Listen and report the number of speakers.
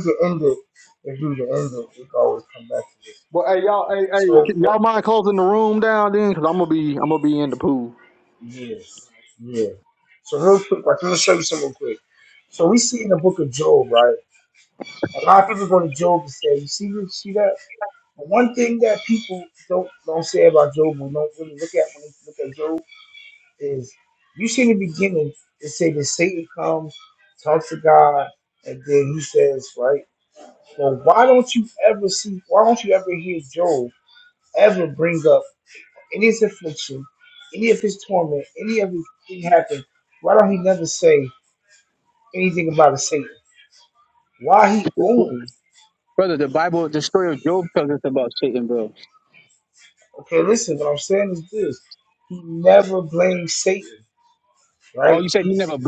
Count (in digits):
3